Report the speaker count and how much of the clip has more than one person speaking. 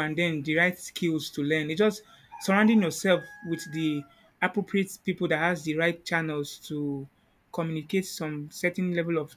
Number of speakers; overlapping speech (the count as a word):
one, no overlap